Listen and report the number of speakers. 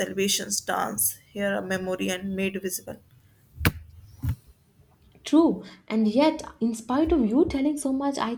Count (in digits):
2